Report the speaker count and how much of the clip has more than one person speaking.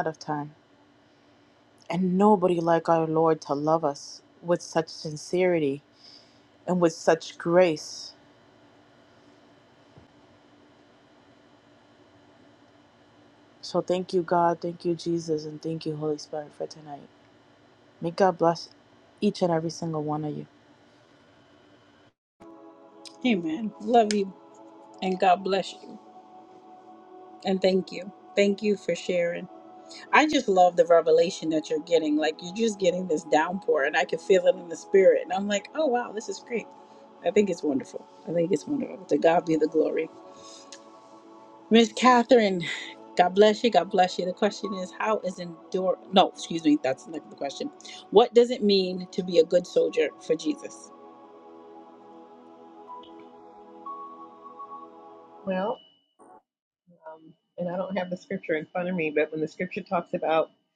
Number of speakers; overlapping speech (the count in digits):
3, no overlap